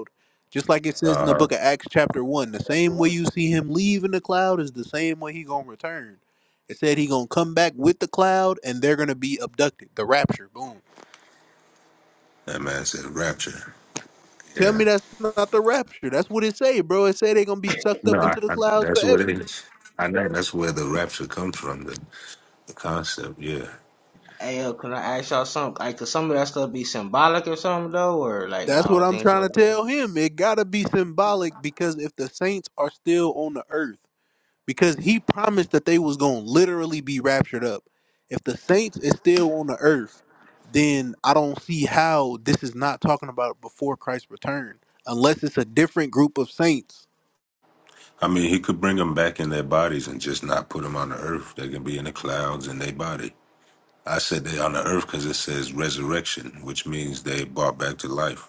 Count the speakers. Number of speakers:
3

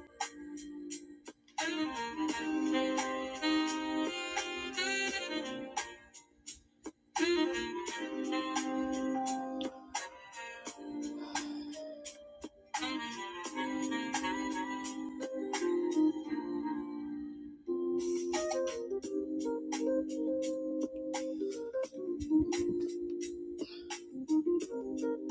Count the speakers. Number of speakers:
0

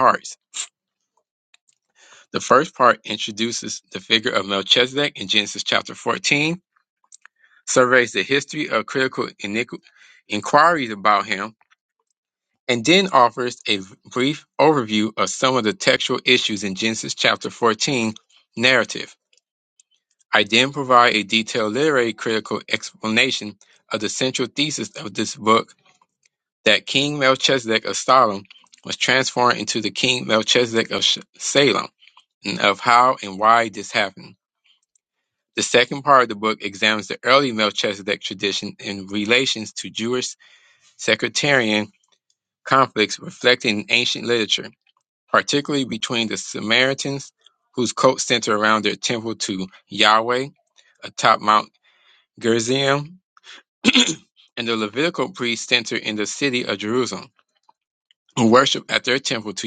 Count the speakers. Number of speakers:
1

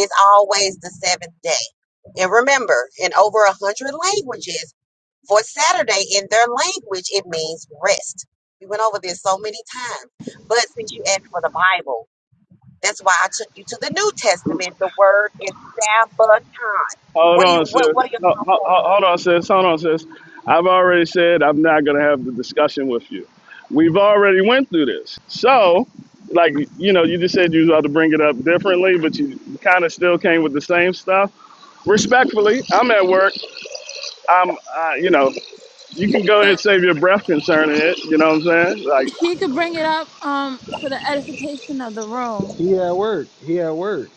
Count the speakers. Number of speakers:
4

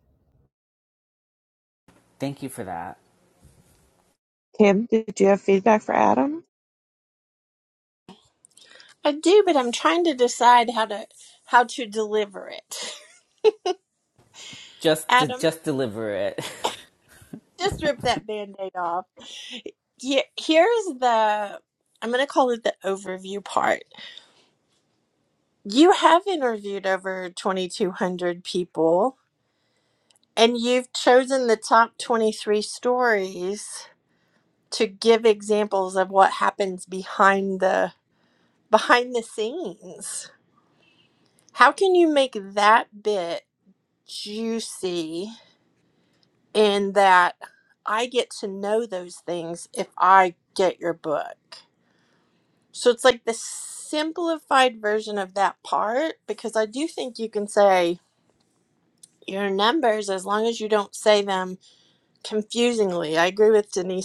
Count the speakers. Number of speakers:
3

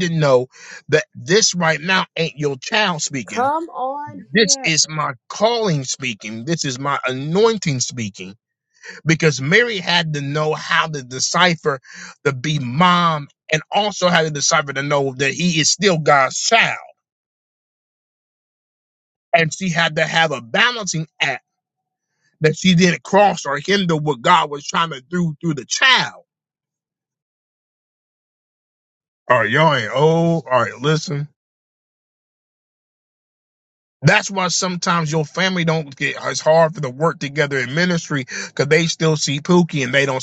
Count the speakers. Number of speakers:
2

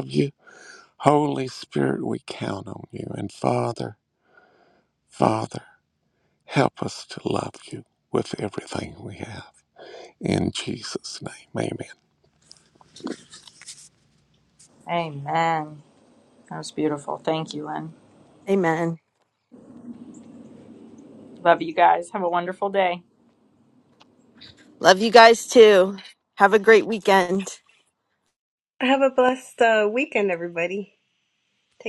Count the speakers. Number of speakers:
4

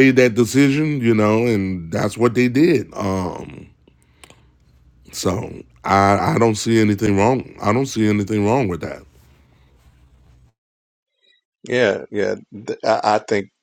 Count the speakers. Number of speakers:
2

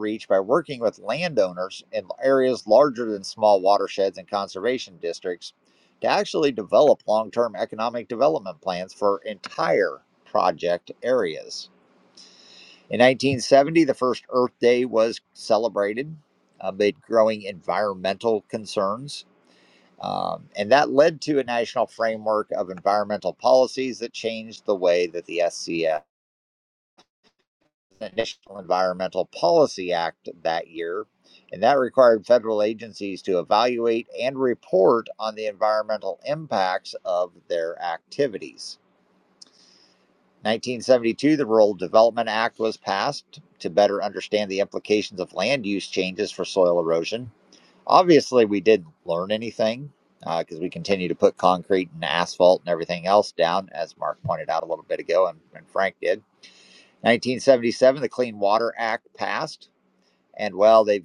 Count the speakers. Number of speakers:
1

